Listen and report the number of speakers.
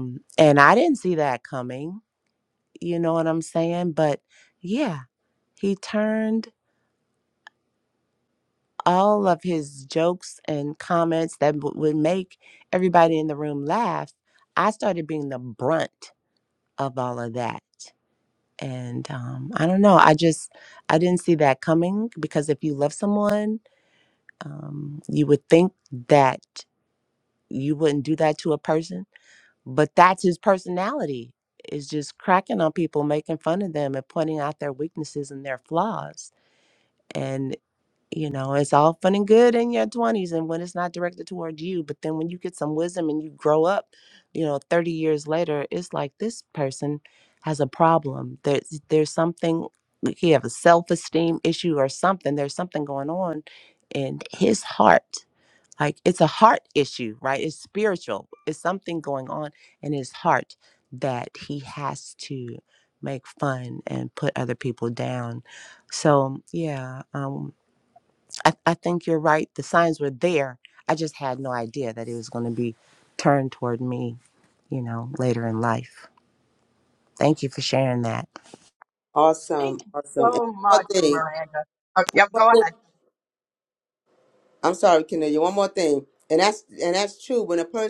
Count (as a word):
three